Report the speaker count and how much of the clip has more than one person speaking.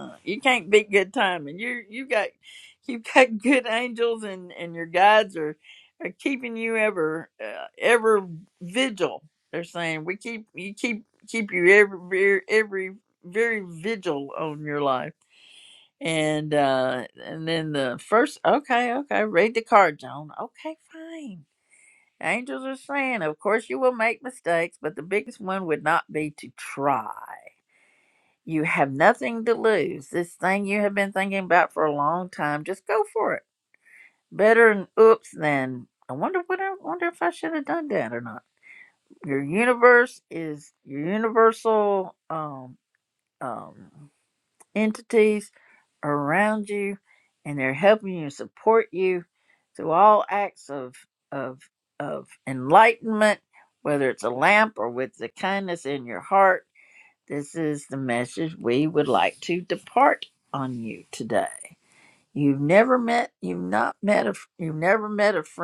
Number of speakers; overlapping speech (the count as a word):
one, no overlap